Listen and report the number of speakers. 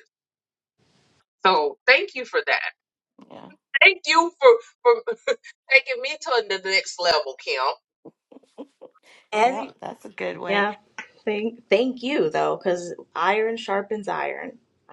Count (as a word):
three